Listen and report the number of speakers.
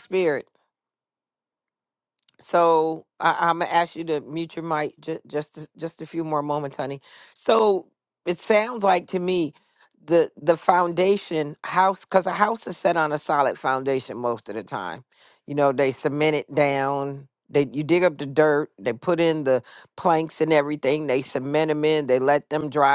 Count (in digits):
1